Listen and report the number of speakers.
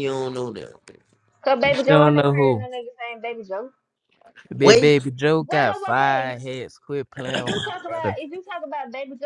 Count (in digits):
3